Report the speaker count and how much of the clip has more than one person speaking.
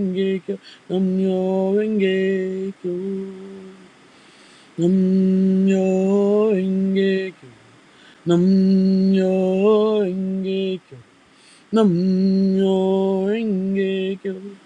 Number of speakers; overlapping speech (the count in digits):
1, no overlap